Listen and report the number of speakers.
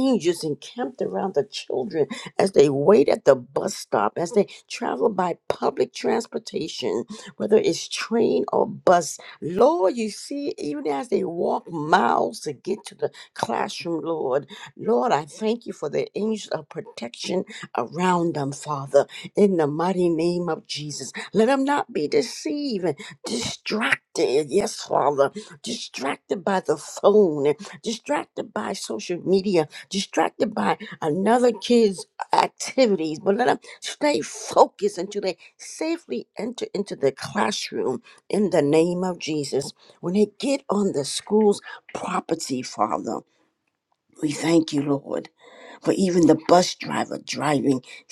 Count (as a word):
one